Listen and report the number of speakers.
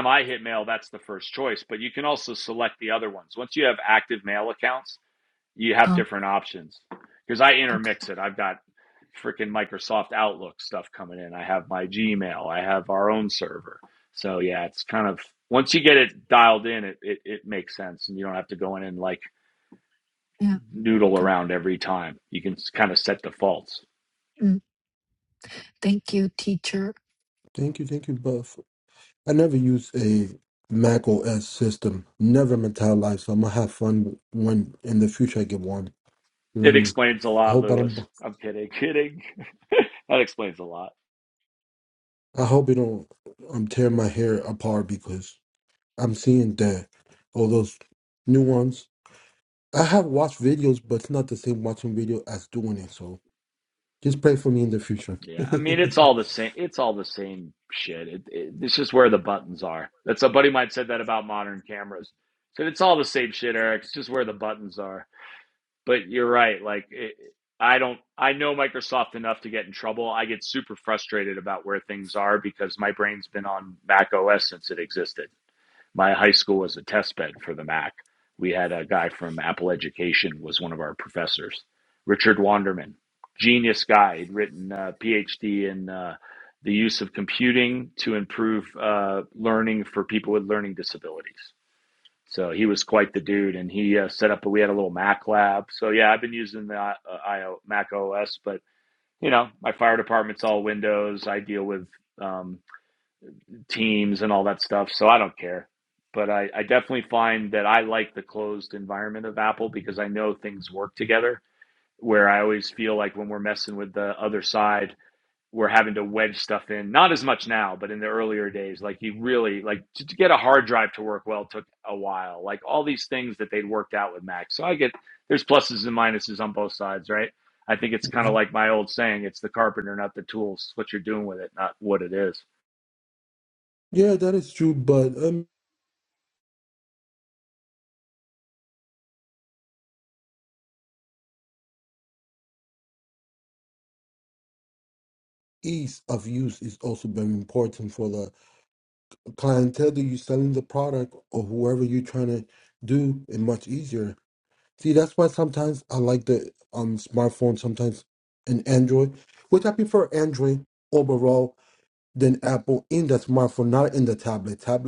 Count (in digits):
3